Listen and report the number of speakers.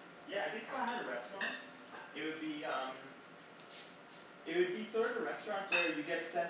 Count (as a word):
one